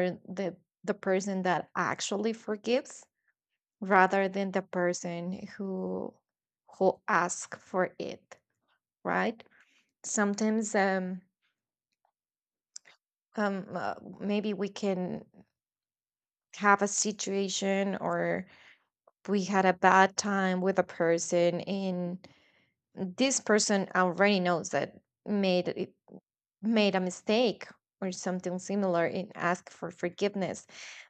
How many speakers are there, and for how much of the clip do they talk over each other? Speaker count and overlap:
one, no overlap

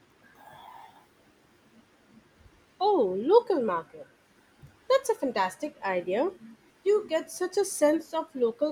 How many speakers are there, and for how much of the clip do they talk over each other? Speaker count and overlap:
one, no overlap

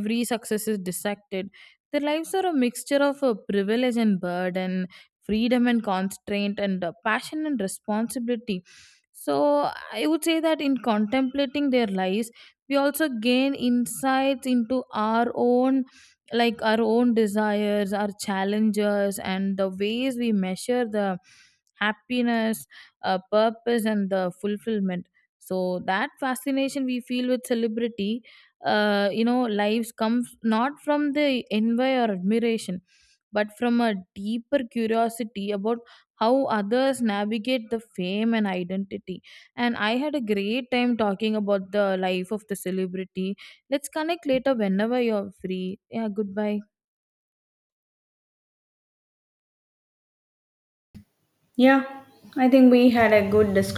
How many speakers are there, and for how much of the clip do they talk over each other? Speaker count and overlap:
two, no overlap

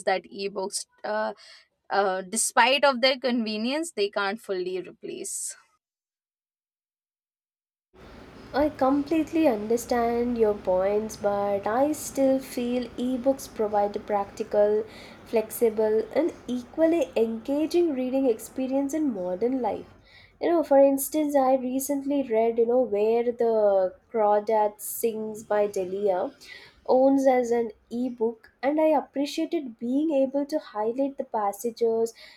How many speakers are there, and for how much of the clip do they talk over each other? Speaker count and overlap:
two, no overlap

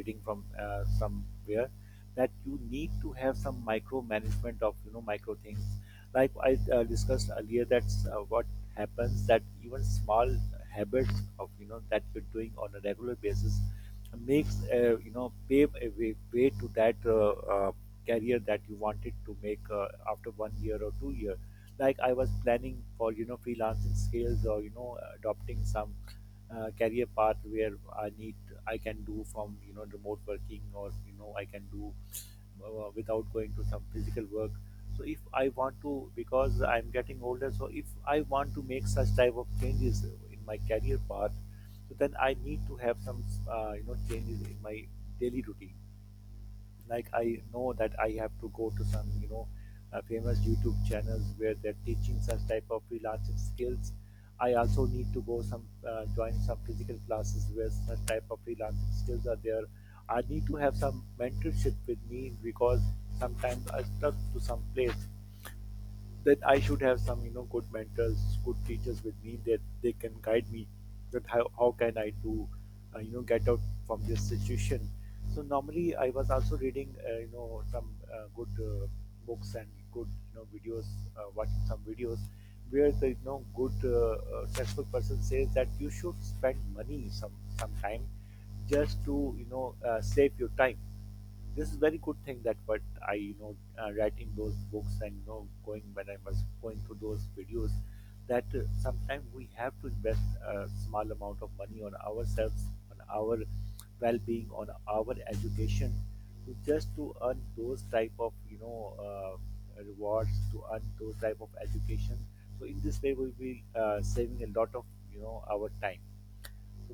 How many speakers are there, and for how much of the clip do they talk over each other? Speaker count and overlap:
one, no overlap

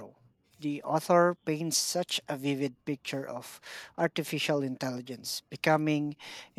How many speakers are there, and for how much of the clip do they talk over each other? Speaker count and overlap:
one, no overlap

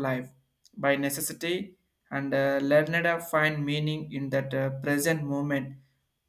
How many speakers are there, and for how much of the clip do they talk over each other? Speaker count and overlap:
one, no overlap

